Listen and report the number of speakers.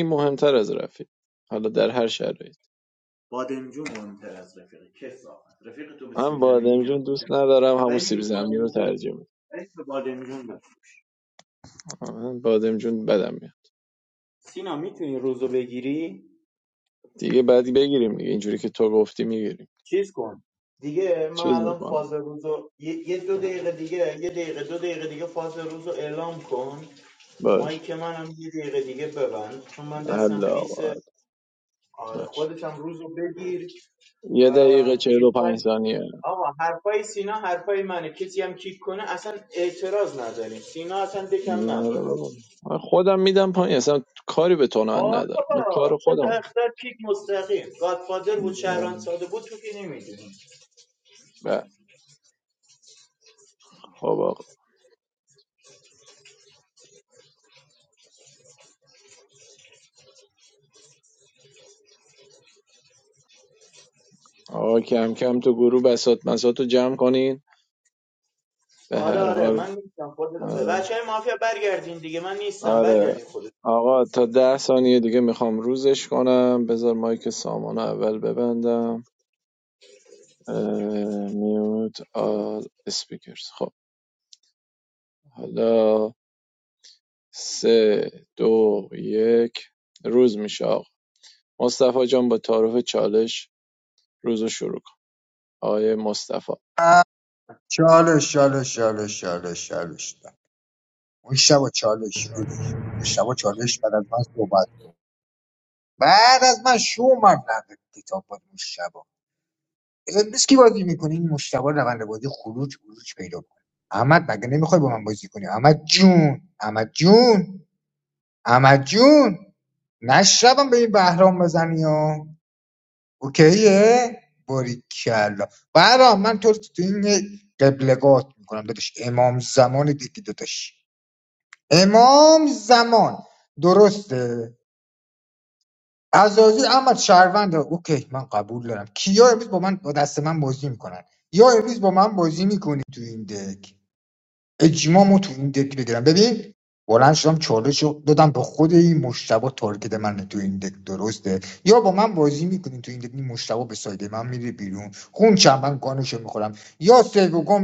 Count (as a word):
three